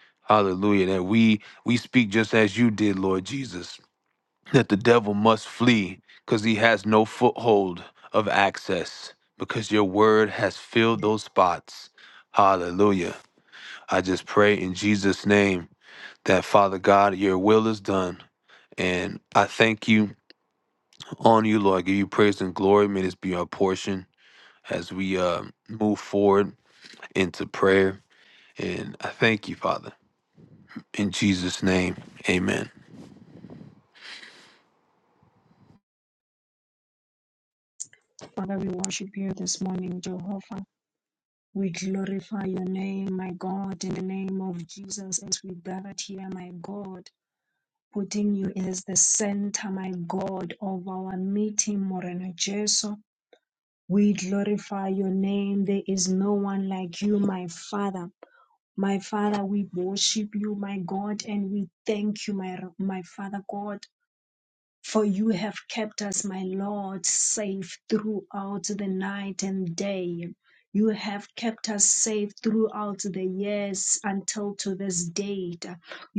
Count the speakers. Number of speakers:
2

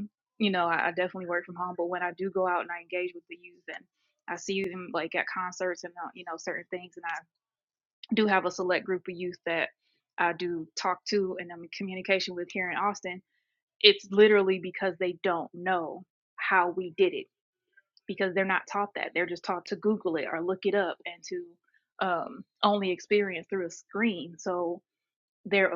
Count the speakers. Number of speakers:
1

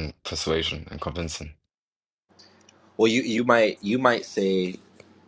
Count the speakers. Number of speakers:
2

